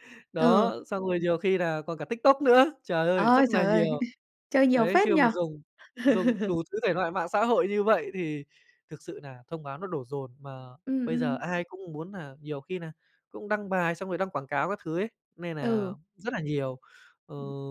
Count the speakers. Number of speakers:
2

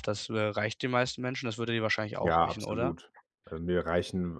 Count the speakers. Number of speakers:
2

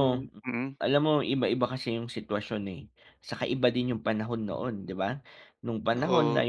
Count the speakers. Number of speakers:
2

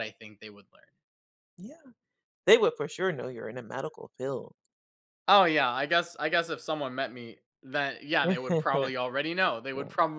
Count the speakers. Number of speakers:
2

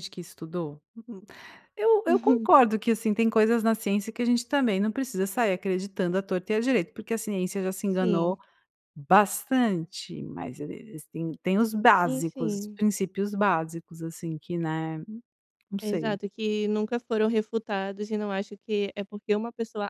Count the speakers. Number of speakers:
2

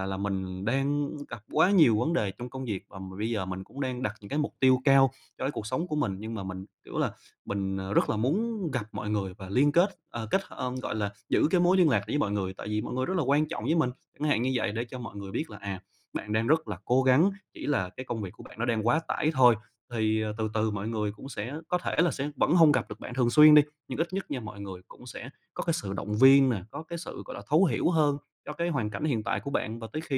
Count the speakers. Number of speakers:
1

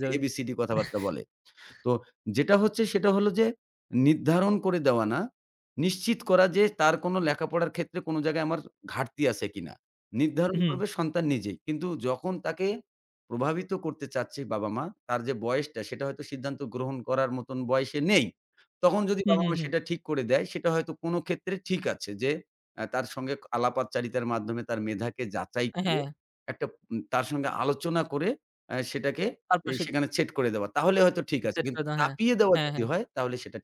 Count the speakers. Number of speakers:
2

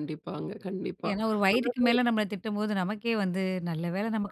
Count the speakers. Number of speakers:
2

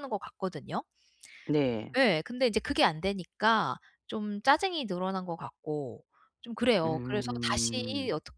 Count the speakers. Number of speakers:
2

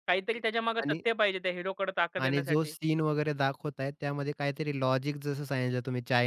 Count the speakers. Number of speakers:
2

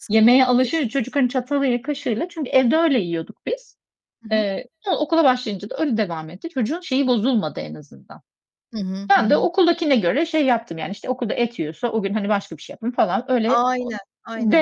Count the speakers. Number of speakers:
2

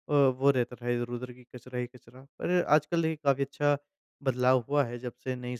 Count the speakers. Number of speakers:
1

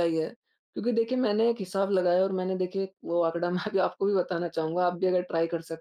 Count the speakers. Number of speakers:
1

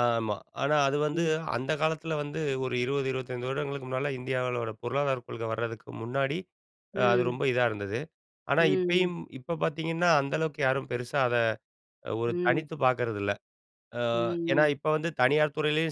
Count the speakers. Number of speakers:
2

